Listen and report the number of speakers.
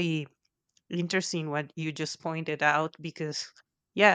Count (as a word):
one